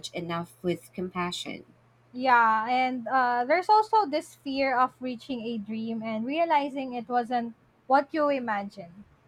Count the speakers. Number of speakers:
two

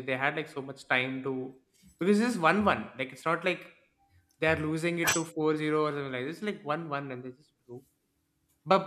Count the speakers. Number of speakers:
one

